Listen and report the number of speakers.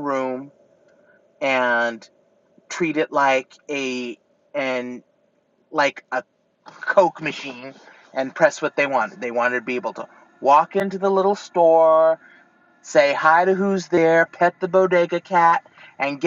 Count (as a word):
one